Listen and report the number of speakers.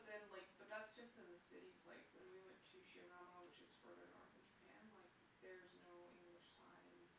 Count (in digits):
1